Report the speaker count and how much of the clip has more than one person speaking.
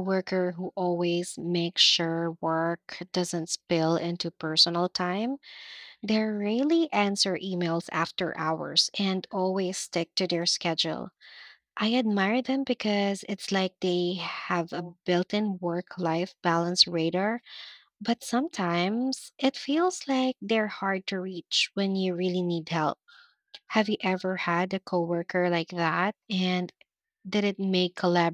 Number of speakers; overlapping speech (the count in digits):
1, no overlap